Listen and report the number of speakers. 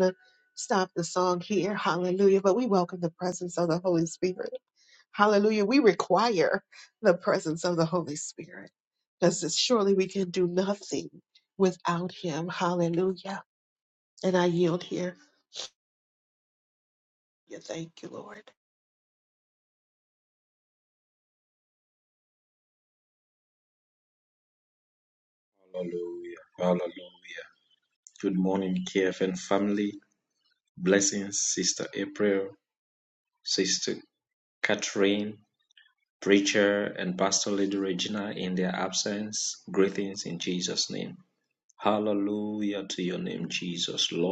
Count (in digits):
2